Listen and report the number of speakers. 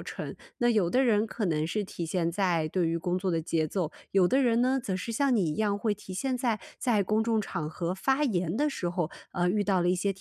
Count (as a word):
one